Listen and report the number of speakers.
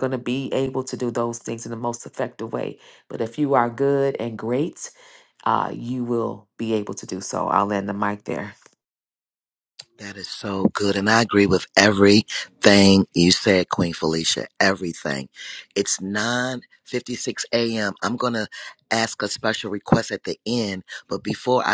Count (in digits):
2